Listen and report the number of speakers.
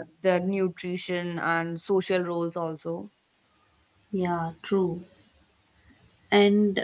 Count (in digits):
2